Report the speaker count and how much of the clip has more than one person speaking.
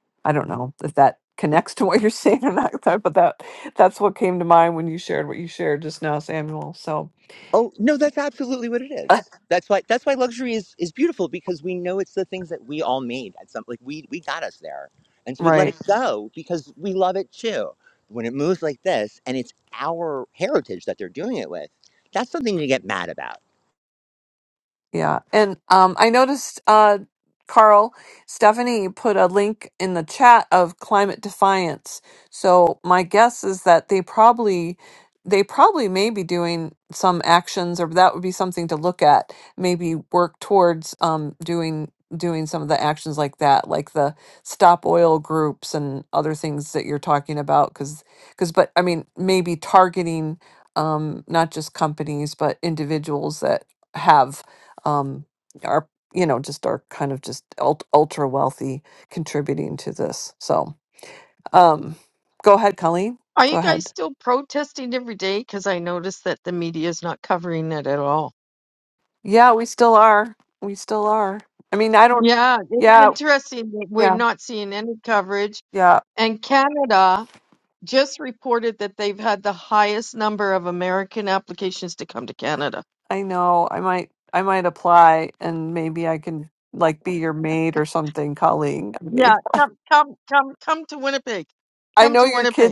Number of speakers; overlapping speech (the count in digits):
3, about 2%